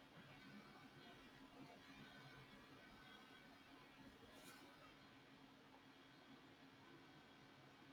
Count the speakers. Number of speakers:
zero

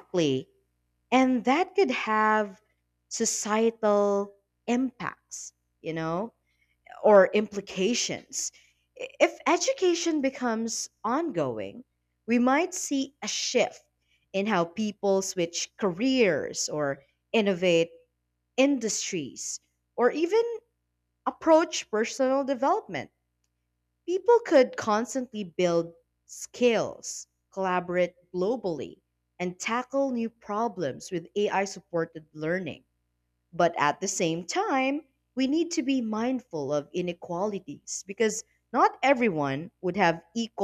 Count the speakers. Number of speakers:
one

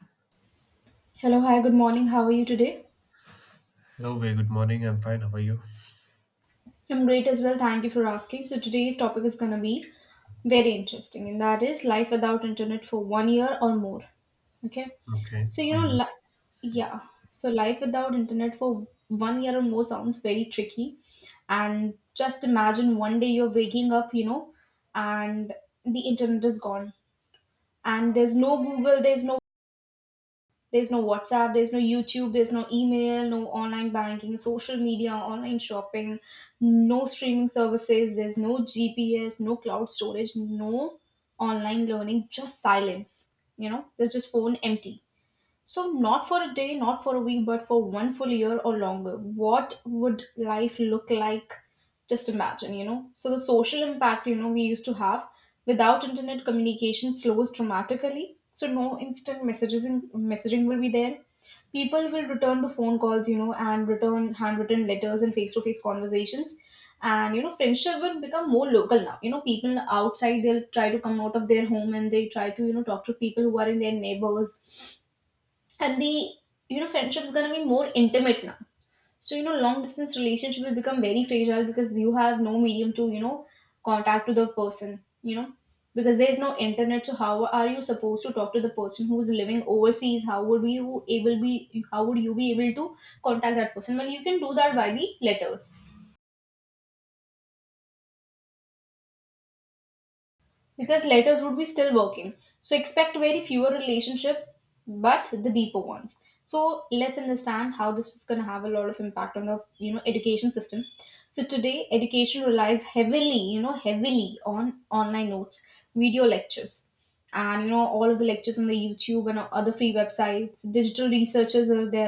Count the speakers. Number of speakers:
two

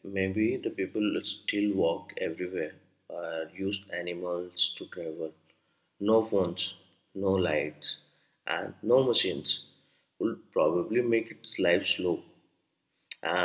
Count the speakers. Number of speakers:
one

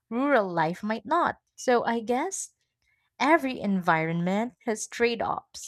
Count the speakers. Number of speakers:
one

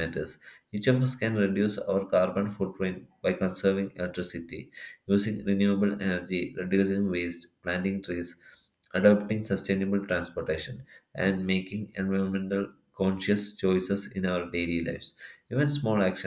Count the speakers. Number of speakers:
one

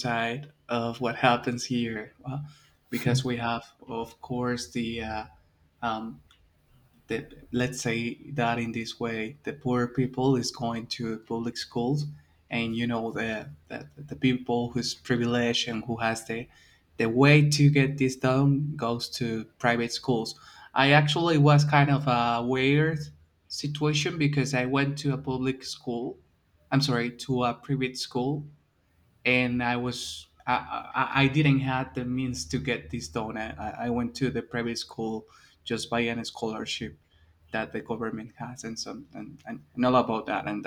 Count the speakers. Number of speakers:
one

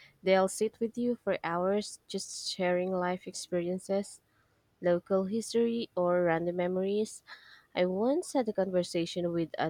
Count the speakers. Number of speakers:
one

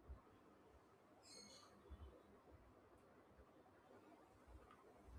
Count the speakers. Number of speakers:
zero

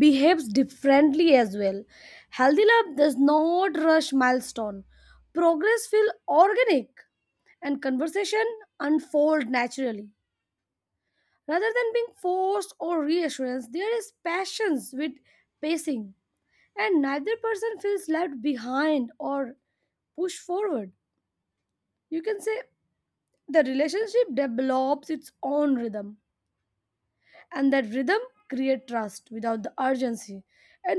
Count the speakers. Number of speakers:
one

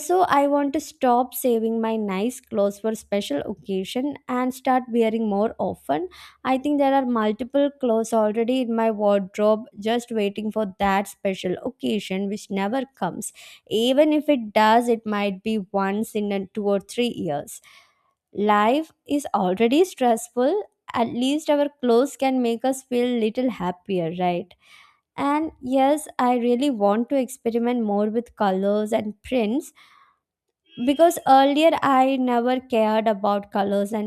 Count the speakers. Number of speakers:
one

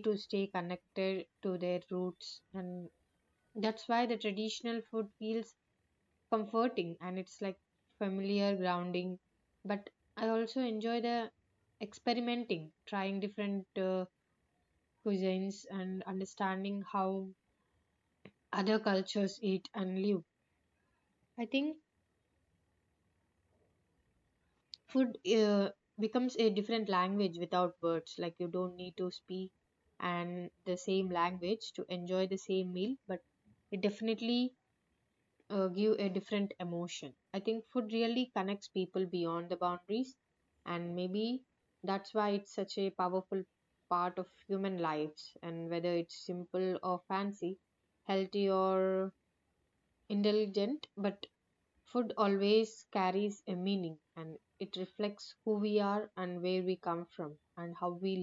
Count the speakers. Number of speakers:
one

